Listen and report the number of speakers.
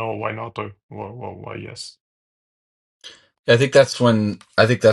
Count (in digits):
2